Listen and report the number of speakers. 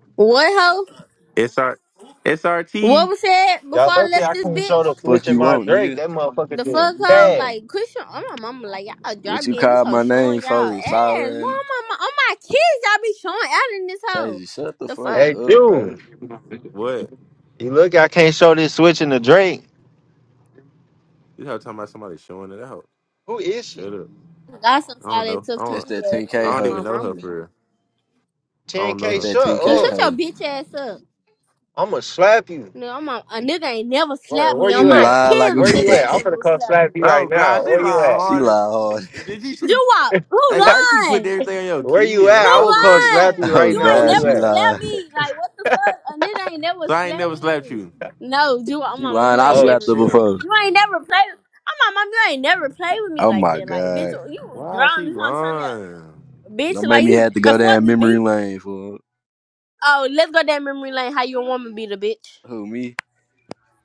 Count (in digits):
4